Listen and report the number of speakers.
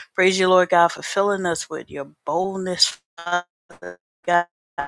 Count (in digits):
1